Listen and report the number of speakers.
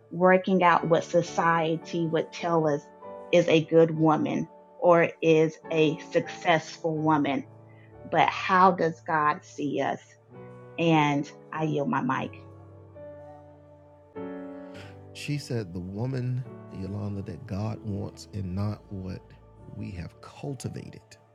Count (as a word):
two